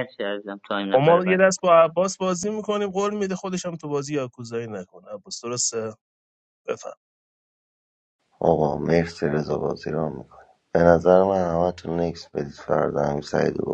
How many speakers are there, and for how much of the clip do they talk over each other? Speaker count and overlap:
3, about 3%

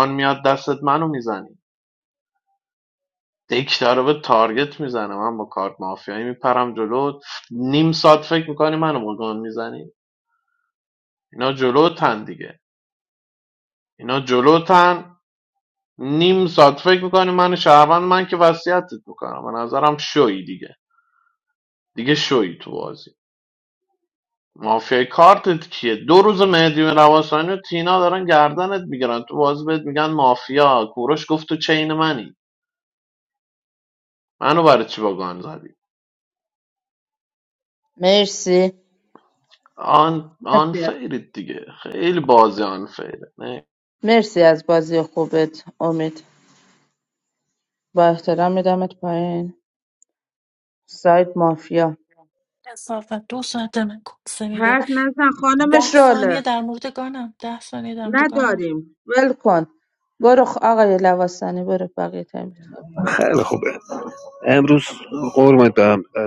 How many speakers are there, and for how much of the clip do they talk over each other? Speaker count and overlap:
4, about 3%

